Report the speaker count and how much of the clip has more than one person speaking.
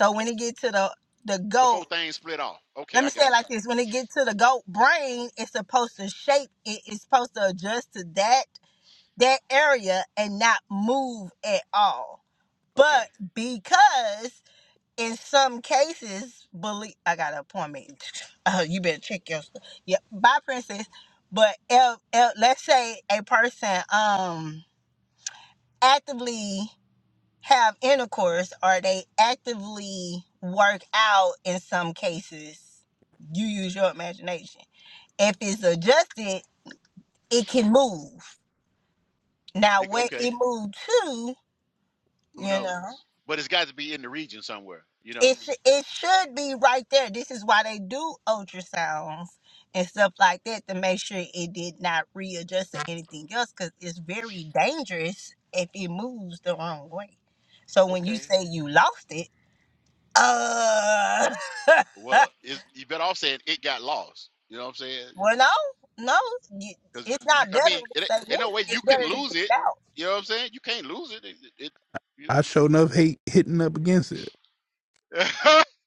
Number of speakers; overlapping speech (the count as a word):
three, about 7%